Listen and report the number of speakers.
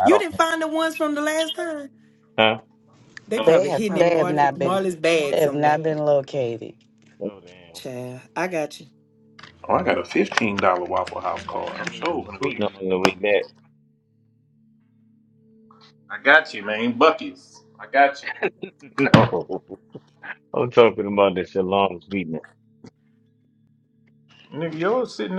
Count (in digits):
4